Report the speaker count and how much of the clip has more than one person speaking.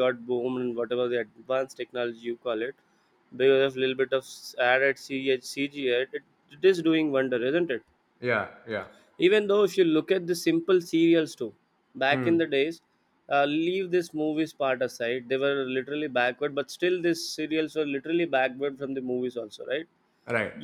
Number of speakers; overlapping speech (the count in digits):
2, about 1%